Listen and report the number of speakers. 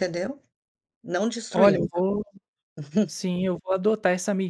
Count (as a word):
two